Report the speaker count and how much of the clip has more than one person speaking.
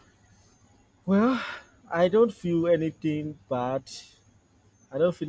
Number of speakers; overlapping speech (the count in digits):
1, no overlap